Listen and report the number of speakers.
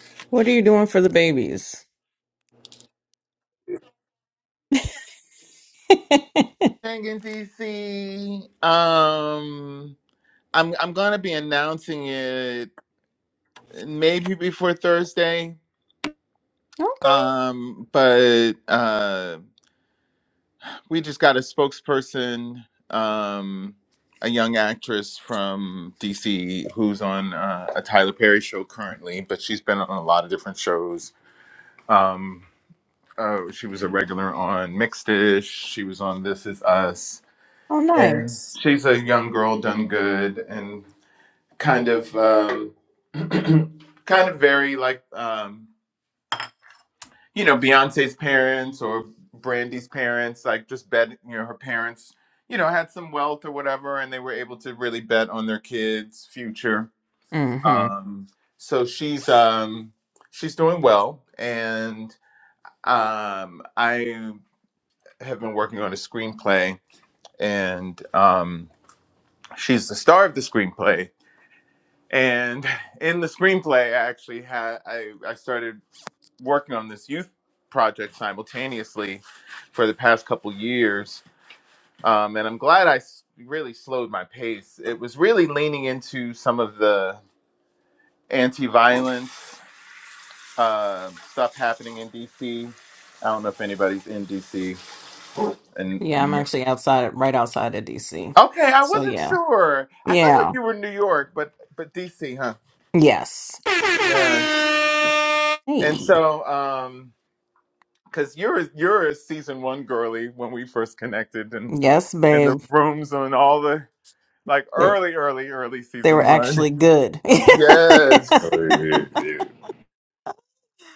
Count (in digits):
3